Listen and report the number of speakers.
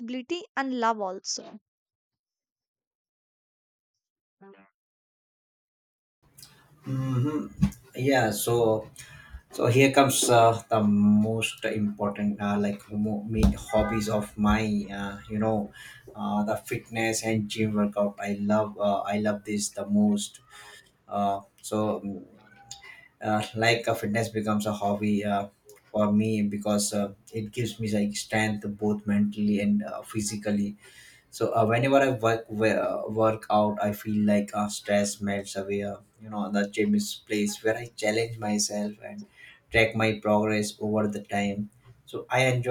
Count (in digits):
2